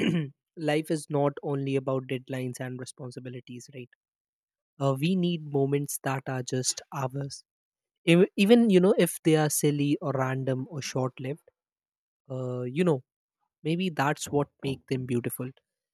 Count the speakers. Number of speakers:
one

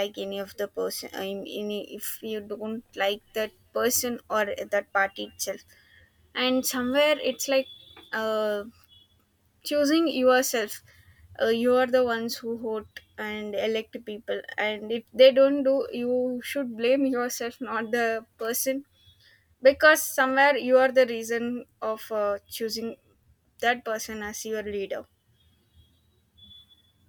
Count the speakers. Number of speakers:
one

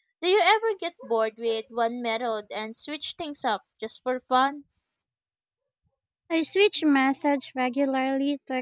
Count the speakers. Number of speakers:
two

